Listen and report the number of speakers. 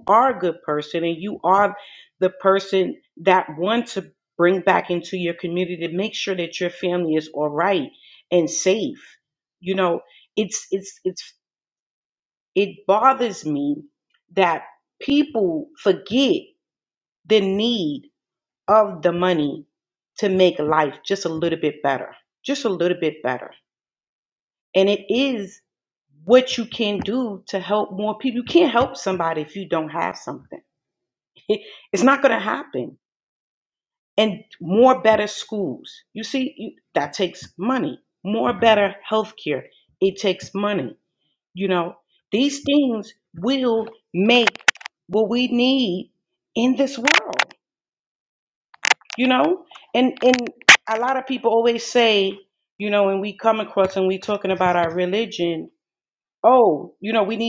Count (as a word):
one